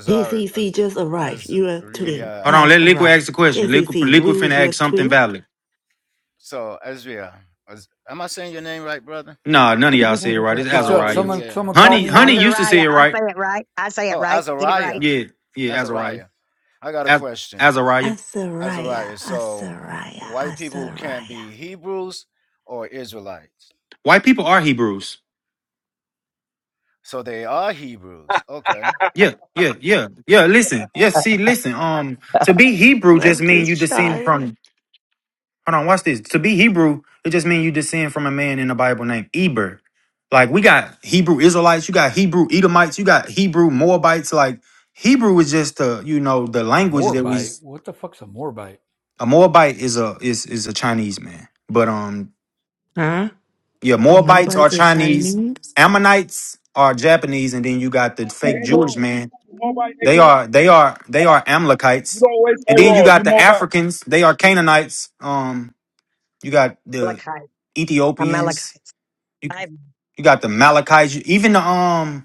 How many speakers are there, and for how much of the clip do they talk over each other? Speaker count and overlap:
6, about 23%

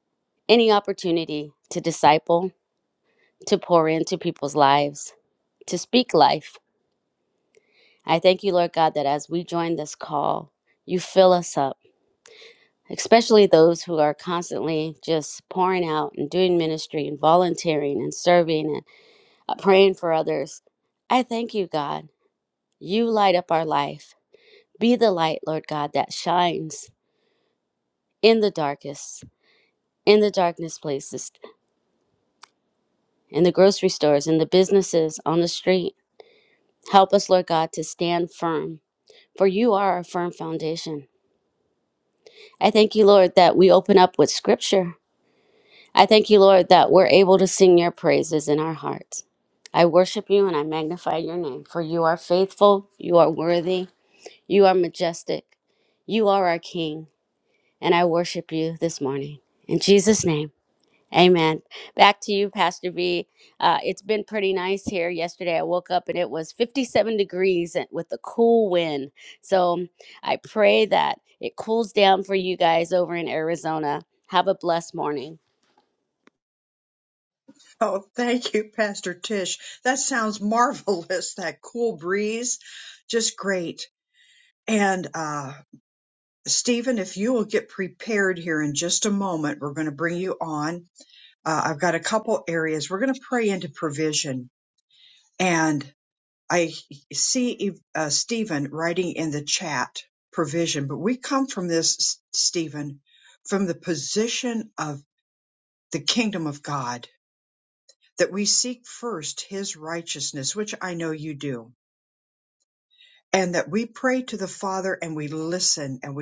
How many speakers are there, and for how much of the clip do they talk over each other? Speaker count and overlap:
2, no overlap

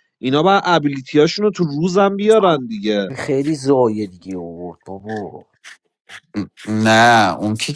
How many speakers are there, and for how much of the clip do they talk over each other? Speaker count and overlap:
3, no overlap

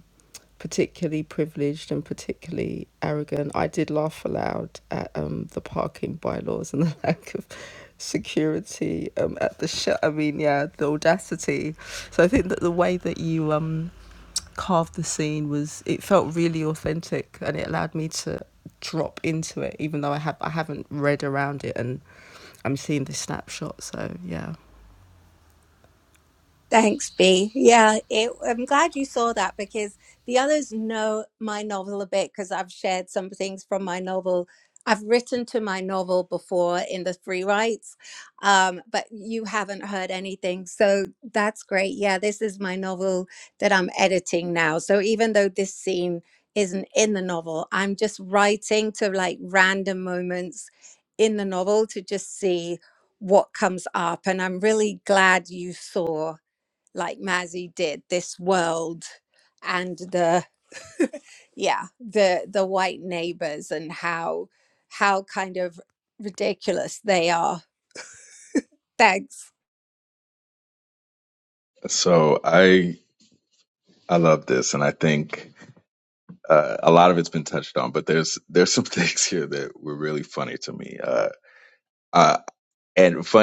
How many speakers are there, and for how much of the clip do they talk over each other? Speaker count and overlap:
3, no overlap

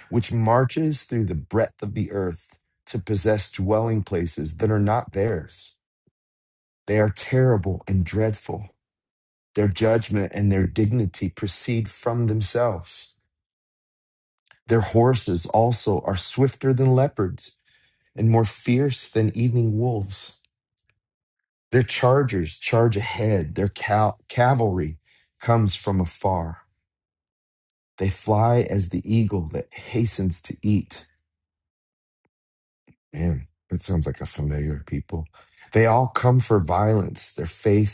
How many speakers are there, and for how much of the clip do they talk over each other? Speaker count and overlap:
1, no overlap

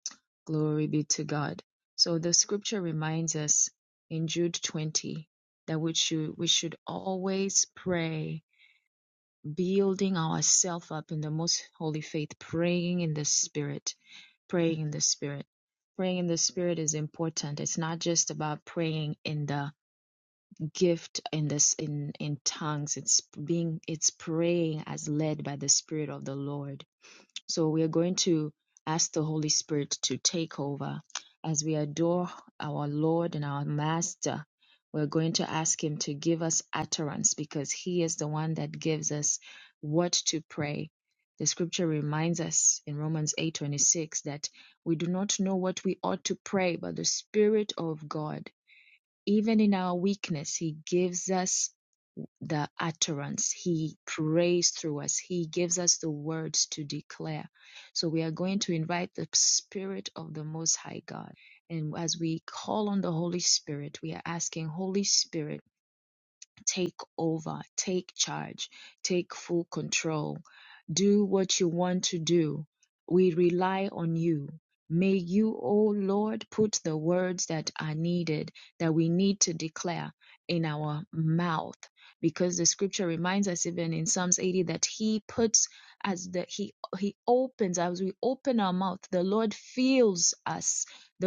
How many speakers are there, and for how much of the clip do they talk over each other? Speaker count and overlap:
1, no overlap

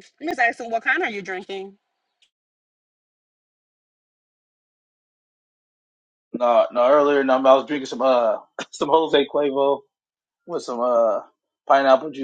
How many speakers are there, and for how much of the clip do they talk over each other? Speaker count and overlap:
2, no overlap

